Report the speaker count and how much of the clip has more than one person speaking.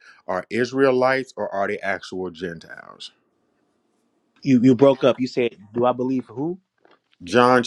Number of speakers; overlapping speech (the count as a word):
two, no overlap